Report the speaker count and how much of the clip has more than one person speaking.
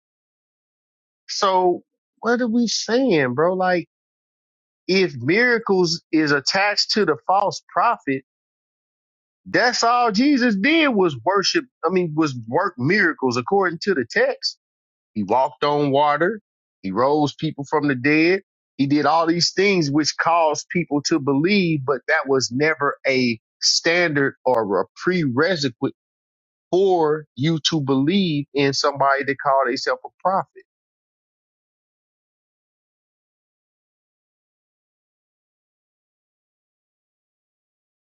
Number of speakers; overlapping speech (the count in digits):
1, no overlap